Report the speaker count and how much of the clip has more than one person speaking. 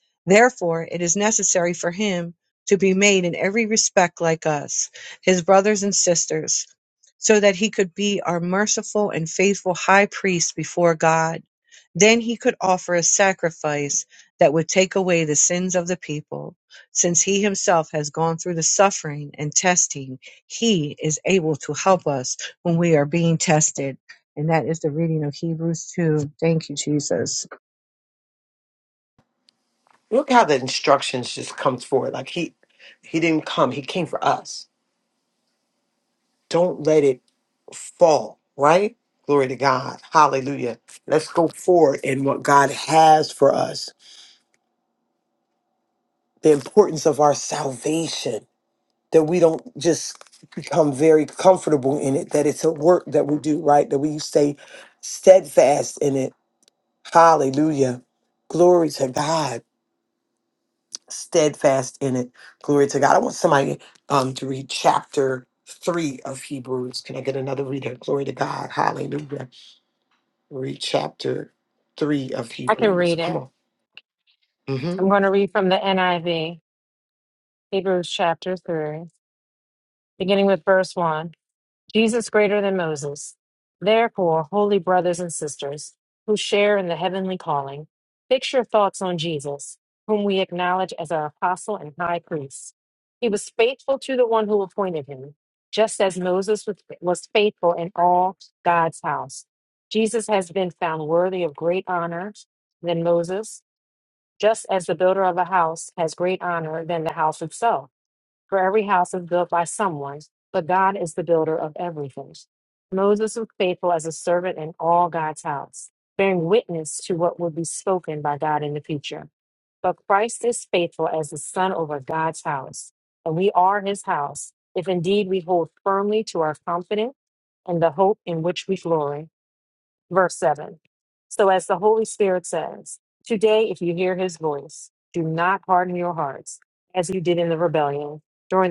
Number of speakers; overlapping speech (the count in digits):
3, about 1%